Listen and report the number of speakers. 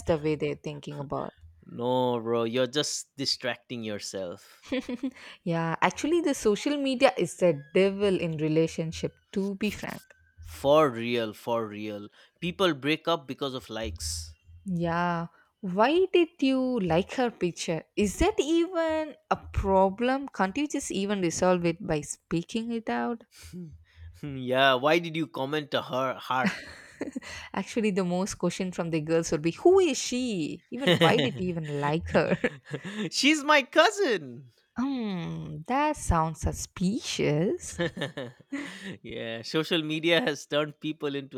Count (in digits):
2